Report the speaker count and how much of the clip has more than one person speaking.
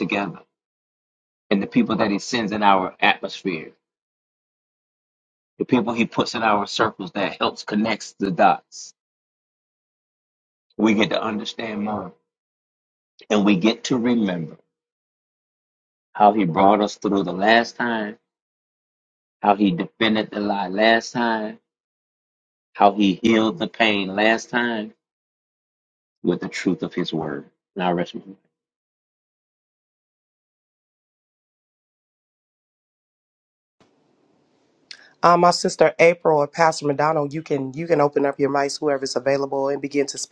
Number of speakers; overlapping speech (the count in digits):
2, no overlap